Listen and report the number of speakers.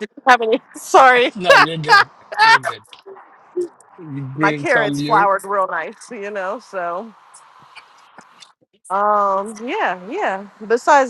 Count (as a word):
two